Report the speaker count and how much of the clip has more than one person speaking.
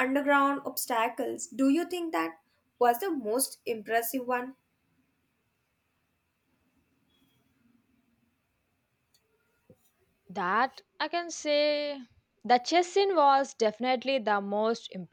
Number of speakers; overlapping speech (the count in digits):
2, no overlap